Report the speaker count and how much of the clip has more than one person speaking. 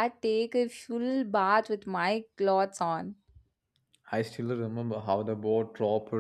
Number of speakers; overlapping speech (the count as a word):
two, no overlap